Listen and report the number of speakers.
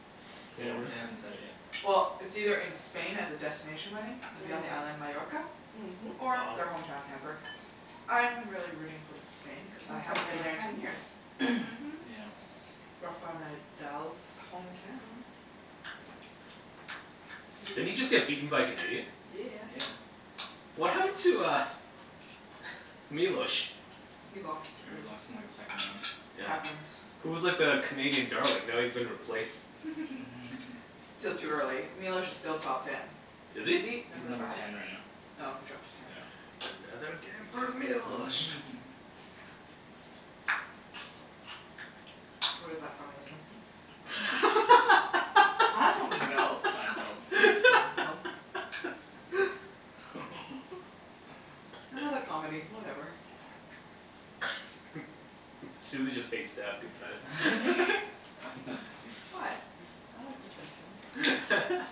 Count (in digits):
3